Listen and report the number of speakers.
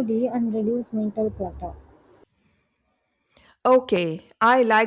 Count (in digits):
2